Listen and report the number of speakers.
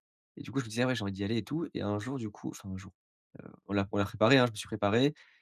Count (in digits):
1